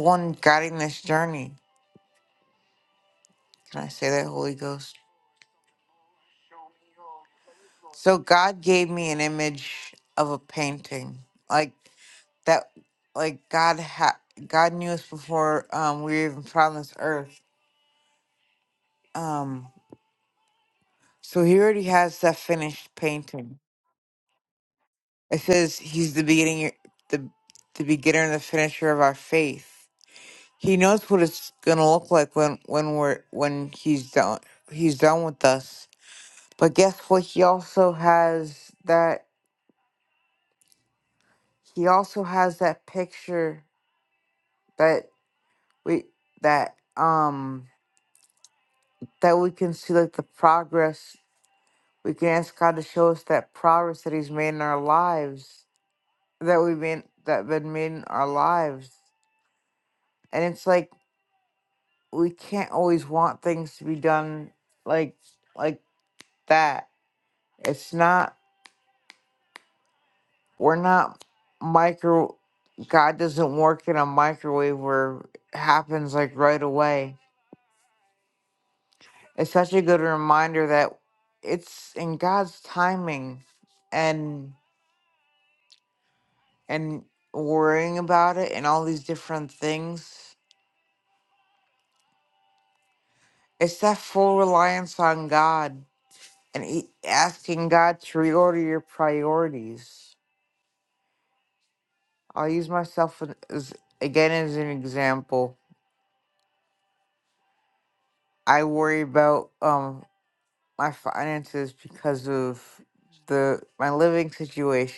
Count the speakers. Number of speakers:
one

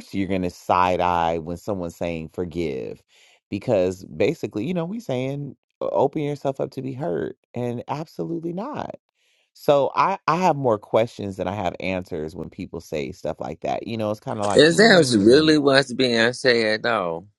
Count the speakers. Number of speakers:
two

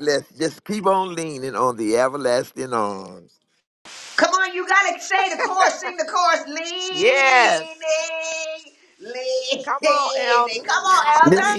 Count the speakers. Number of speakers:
three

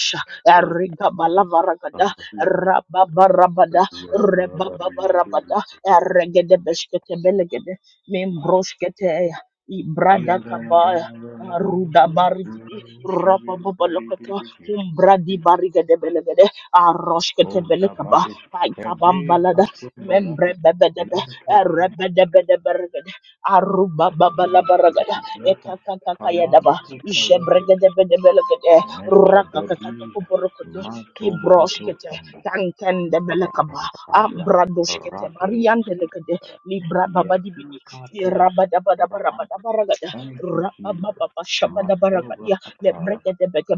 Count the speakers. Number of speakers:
two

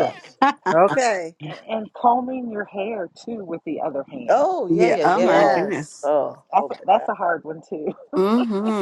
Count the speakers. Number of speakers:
four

